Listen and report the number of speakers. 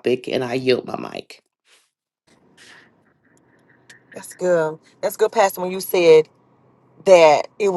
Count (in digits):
2